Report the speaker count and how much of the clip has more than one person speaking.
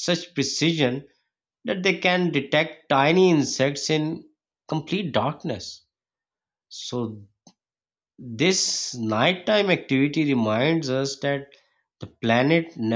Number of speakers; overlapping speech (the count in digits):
1, no overlap